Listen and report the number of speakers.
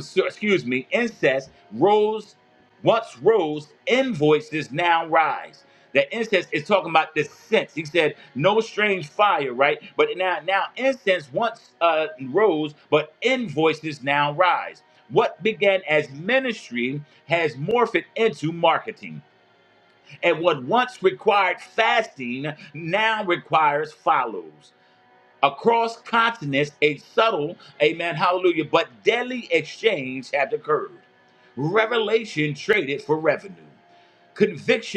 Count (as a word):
one